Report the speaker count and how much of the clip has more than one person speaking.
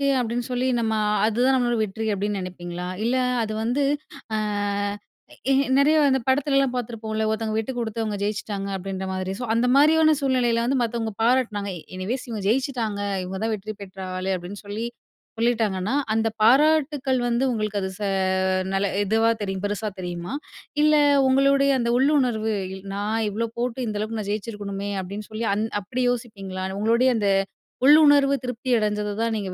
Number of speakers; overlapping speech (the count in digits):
1, no overlap